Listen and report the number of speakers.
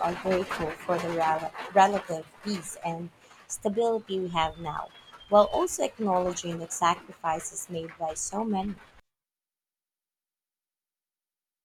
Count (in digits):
1